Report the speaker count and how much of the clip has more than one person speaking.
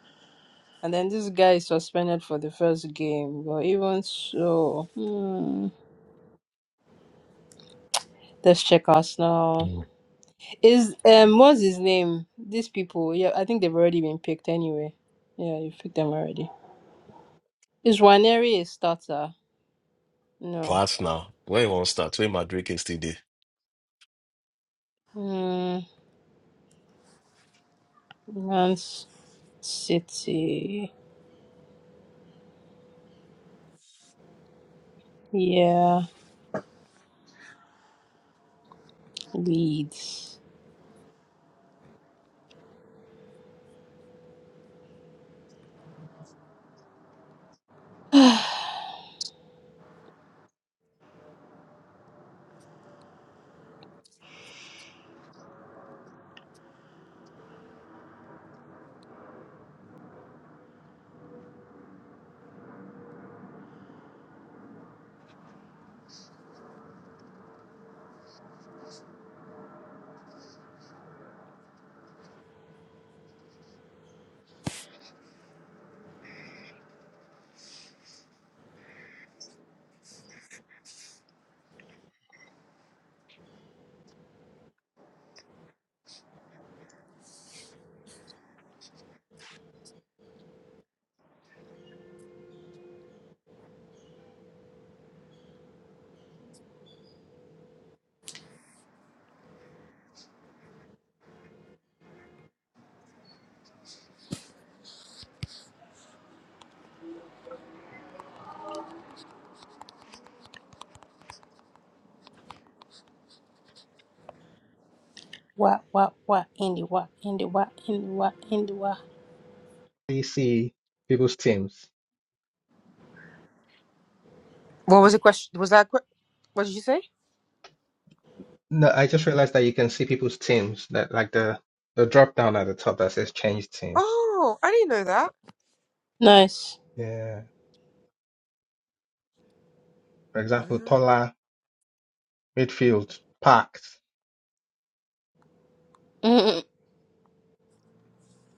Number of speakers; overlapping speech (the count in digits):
4, under 1%